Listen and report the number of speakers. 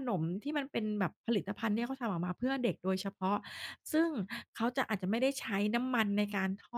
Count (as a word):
one